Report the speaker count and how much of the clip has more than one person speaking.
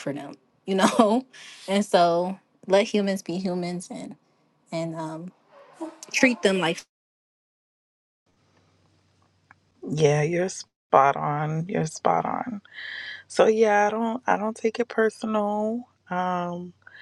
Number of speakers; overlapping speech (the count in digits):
2, no overlap